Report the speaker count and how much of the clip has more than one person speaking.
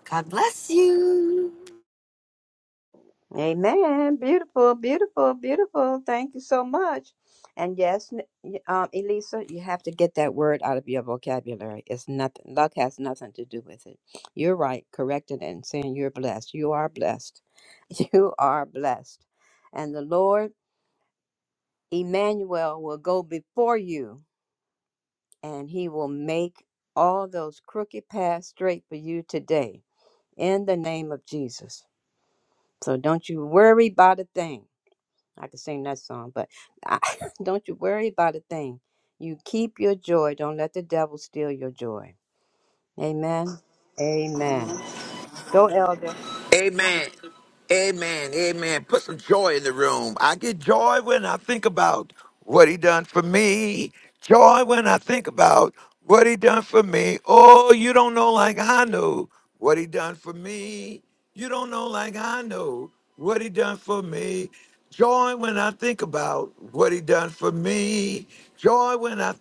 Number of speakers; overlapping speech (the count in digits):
3, no overlap